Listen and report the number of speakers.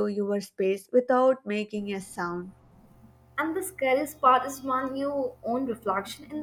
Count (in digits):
2